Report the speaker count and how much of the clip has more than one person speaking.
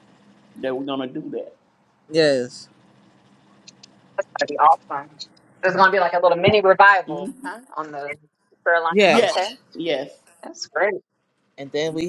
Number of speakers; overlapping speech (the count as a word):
three, about 7%